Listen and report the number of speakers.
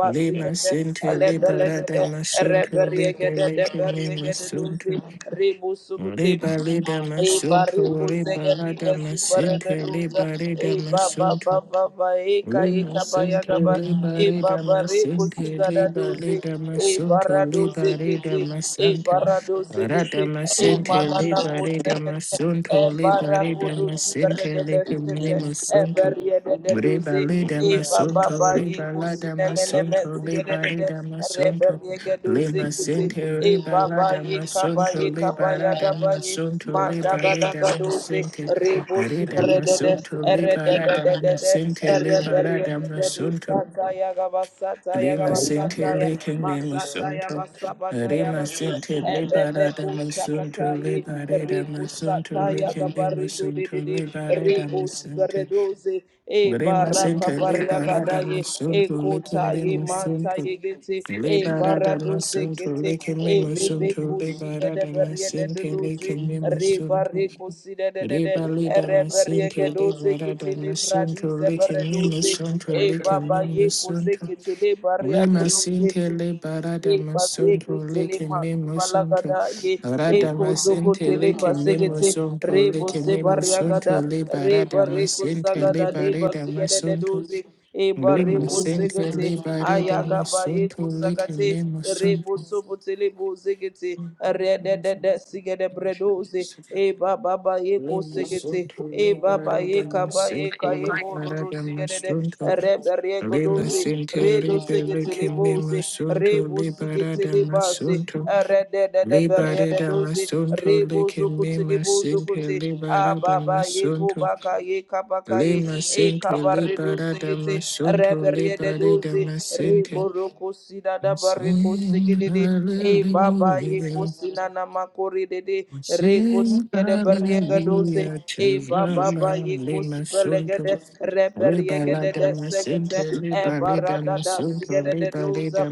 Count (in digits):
2